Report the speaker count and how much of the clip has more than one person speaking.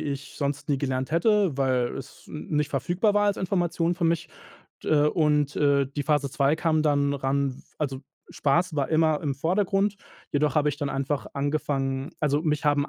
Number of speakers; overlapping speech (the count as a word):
one, no overlap